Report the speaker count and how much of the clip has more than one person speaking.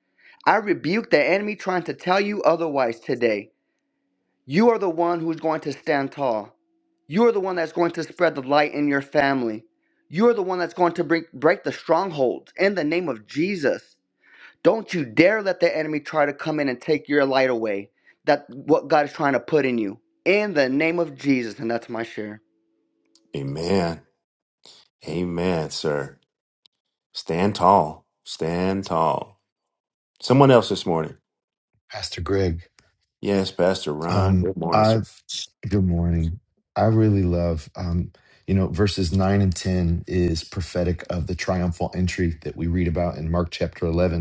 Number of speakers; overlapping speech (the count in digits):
3, about 2%